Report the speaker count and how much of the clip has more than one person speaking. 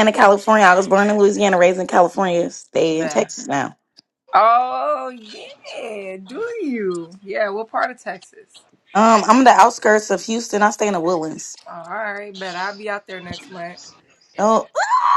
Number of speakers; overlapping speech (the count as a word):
two, about 2%